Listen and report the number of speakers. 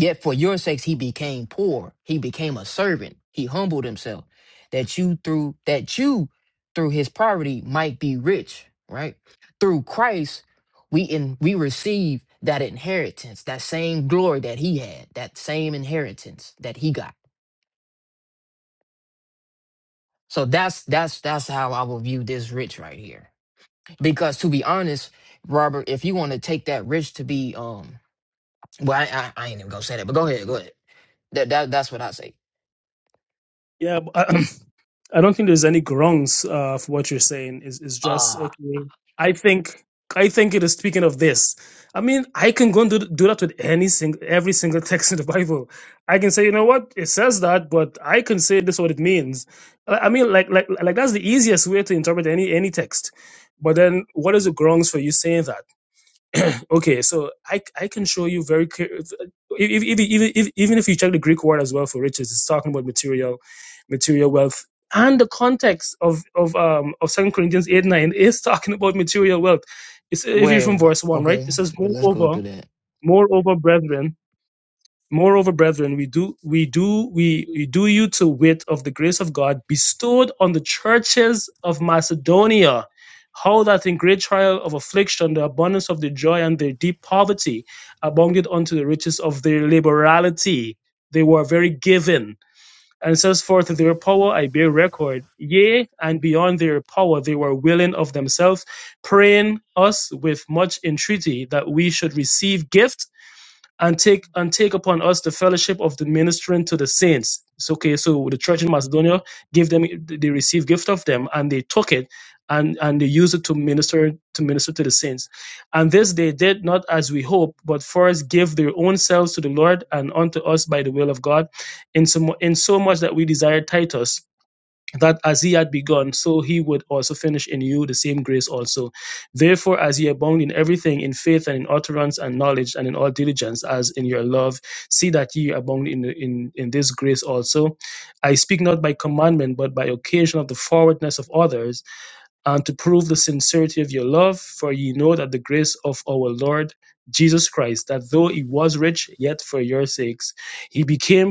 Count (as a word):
two